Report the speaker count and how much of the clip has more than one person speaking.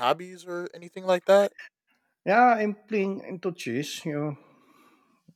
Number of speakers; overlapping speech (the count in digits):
2, no overlap